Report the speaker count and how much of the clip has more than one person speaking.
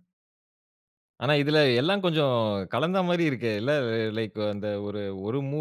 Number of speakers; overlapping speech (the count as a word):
one, no overlap